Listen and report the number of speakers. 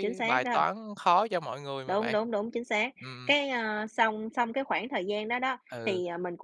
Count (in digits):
2